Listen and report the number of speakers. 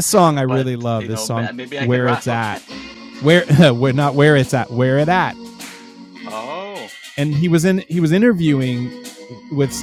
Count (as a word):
two